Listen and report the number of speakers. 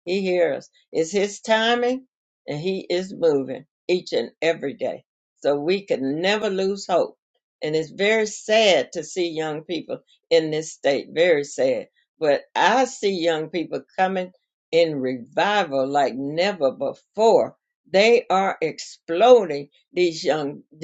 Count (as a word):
one